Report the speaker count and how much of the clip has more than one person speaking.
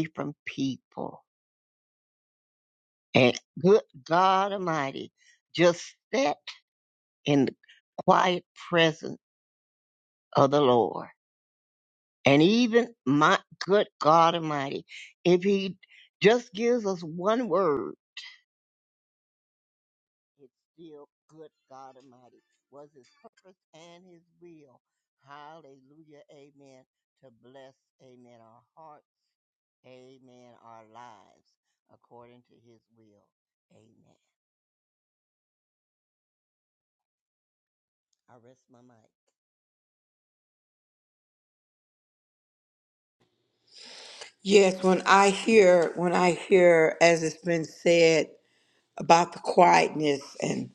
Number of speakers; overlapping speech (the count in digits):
2, no overlap